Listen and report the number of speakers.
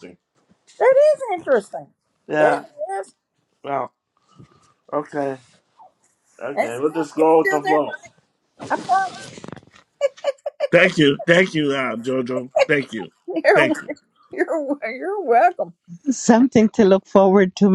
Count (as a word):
three